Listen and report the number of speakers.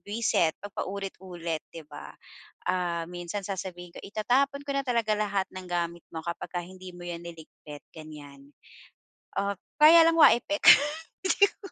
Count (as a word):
one